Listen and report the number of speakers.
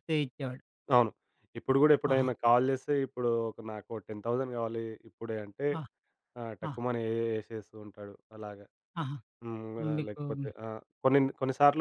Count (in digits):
2